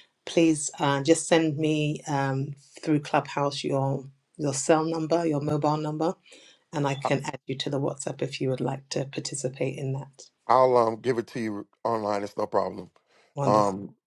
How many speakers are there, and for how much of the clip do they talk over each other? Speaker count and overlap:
two, about 1%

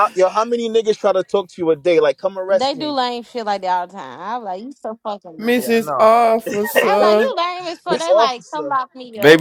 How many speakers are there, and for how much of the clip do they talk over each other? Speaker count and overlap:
three, about 25%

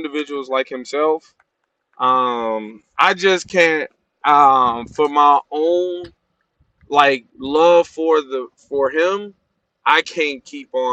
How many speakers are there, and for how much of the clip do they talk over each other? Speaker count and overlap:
one, no overlap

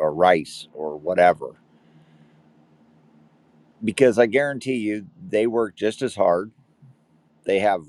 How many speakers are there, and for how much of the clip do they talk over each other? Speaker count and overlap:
one, no overlap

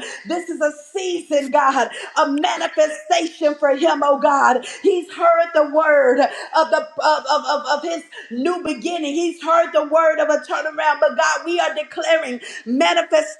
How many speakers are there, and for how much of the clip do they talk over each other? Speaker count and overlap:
one, no overlap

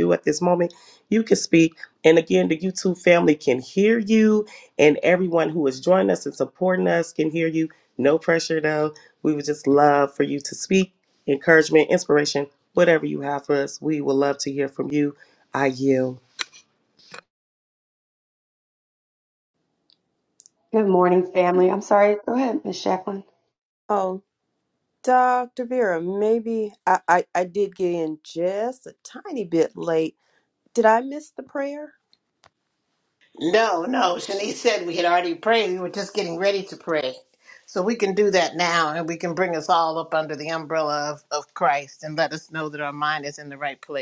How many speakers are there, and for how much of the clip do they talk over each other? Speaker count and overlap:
four, no overlap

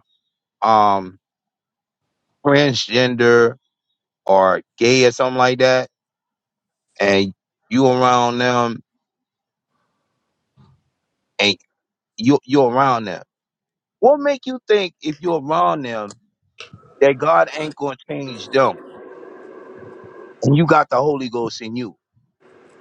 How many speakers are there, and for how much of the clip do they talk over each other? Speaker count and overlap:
one, no overlap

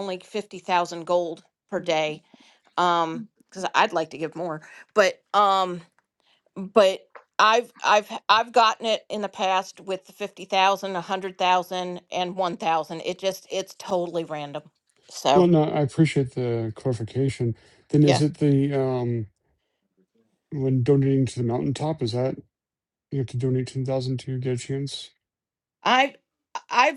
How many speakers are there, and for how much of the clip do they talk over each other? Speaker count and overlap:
two, about 1%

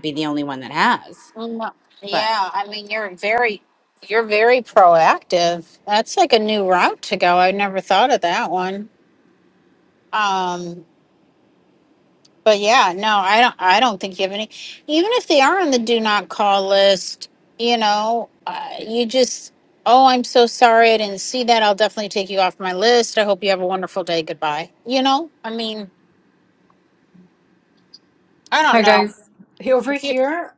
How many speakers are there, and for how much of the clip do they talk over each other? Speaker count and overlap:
three, about 2%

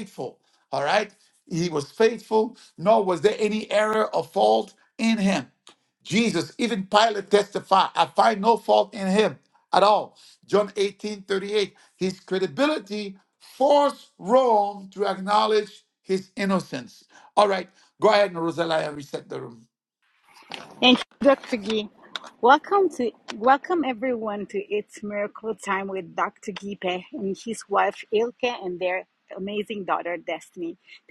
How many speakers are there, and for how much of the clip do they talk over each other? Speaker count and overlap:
two, no overlap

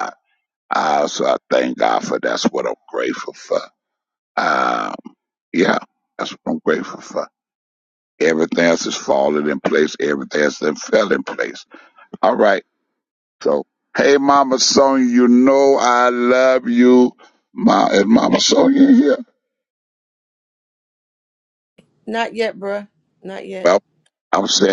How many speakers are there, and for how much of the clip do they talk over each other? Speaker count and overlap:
two, under 1%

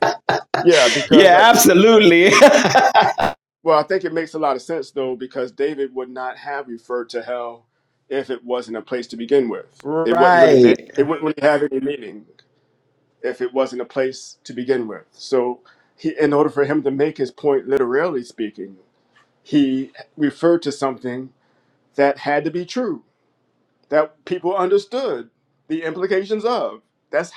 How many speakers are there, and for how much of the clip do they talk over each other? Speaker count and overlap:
two, about 4%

